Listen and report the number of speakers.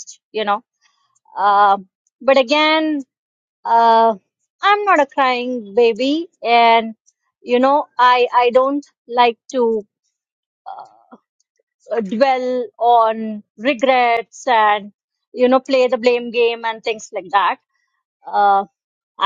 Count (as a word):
one